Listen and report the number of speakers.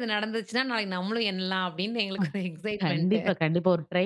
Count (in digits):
2